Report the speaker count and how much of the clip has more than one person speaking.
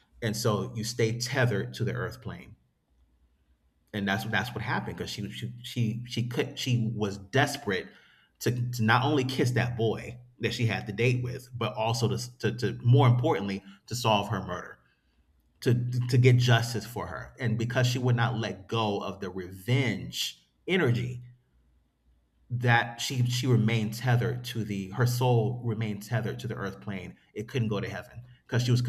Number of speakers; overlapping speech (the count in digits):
1, no overlap